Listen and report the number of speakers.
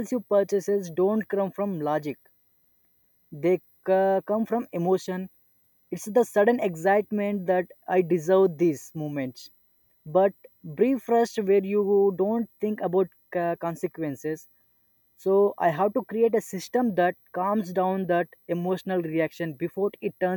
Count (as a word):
one